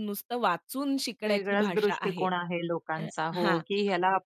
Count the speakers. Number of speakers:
2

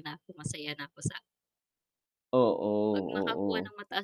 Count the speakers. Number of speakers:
2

